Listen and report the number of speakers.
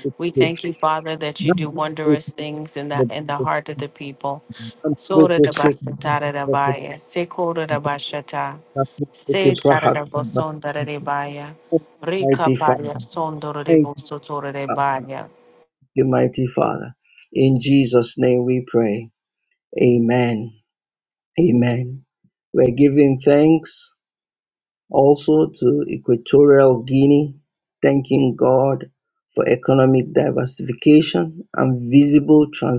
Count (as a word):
two